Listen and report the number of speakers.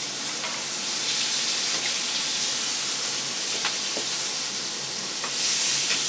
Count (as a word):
zero